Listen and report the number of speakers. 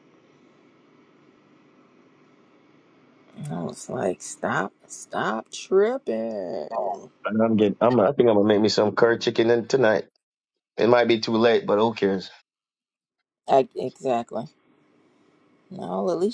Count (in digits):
2